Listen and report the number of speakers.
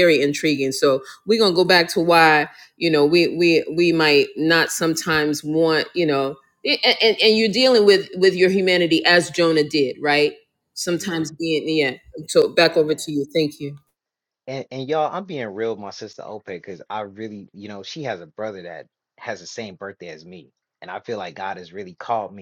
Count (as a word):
two